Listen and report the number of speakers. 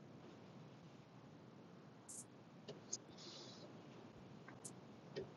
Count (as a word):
zero